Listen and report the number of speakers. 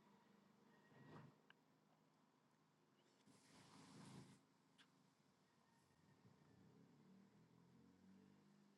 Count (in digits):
0